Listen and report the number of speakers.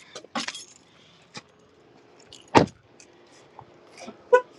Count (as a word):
zero